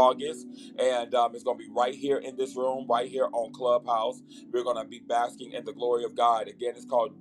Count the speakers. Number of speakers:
one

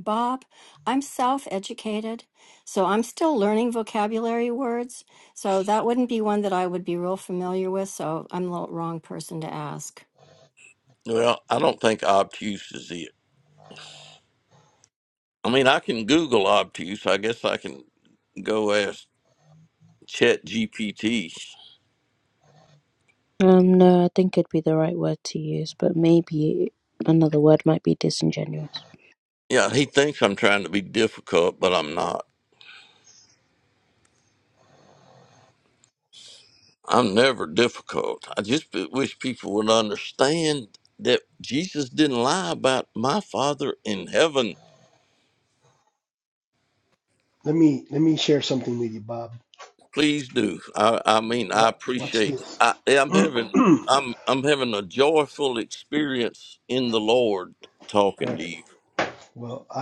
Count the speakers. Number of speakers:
four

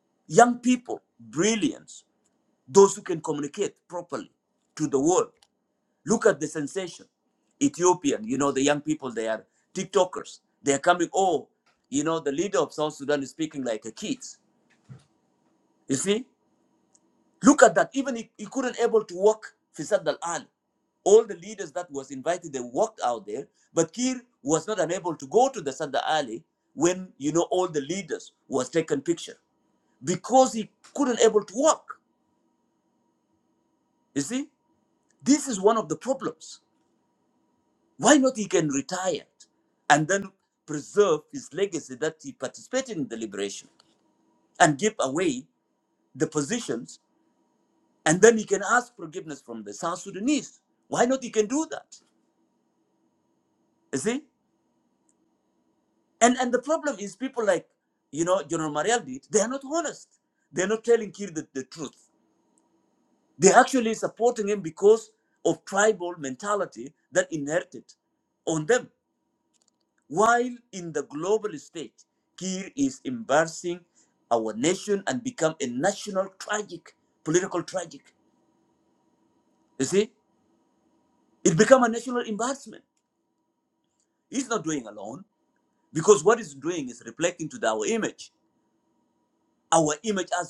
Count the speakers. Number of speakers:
one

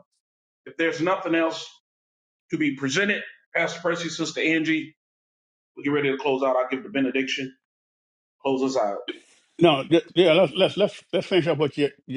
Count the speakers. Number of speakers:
two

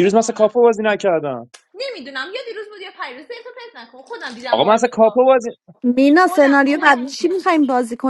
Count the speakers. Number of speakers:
three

